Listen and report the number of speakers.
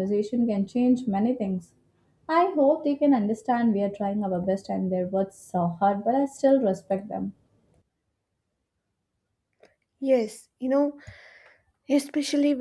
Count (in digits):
2